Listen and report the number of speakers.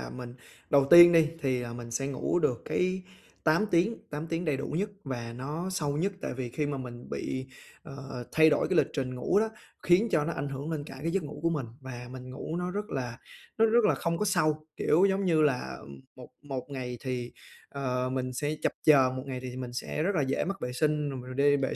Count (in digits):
1